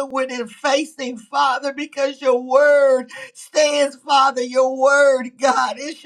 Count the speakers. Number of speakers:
1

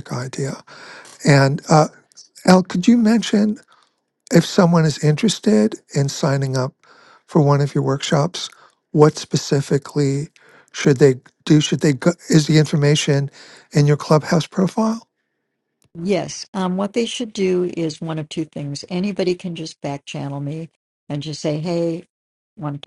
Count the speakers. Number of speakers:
2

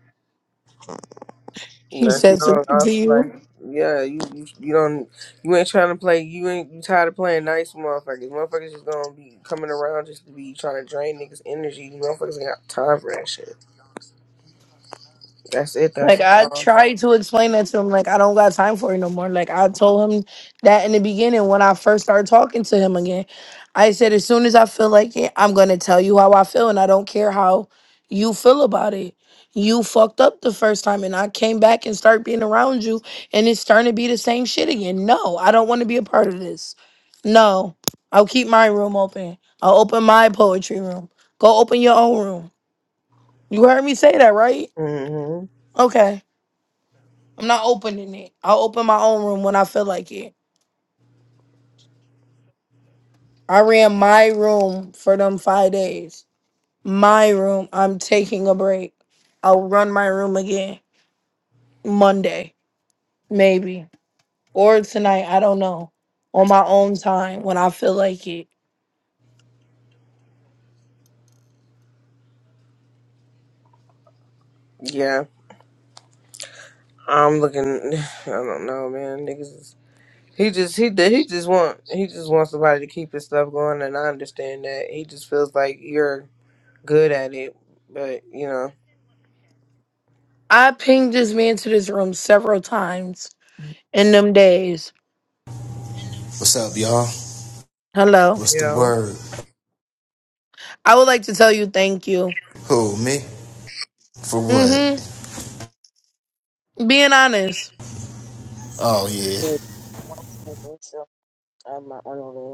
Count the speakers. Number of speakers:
4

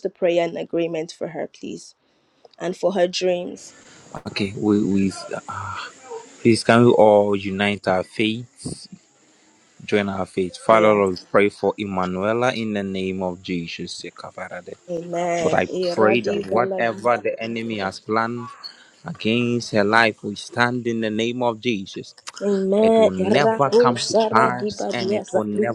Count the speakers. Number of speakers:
2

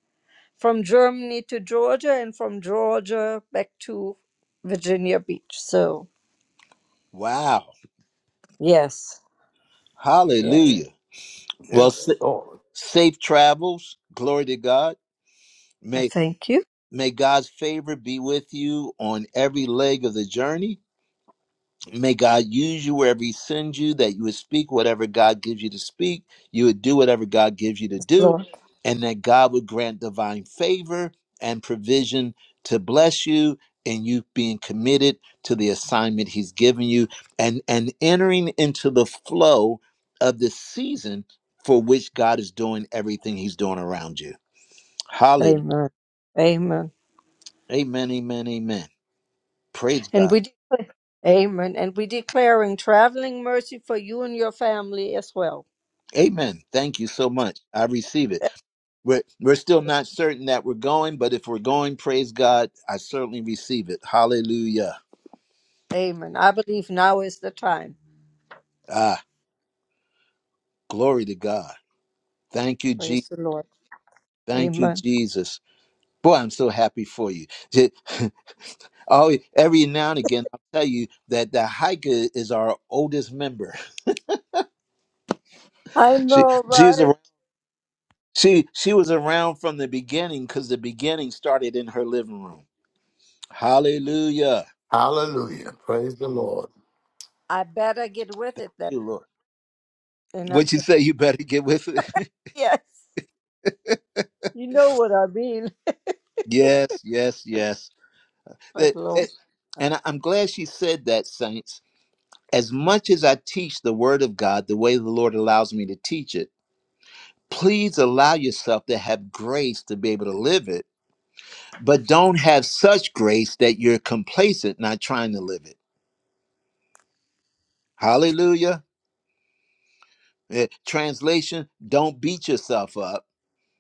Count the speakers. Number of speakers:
3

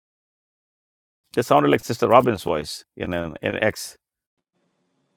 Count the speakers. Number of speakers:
1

